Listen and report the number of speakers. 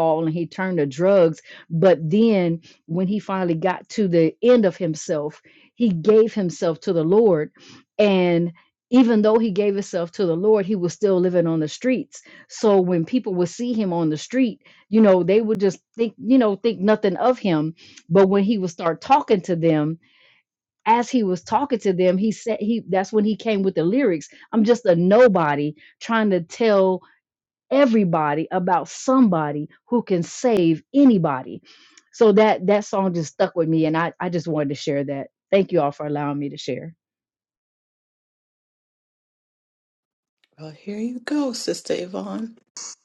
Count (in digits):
2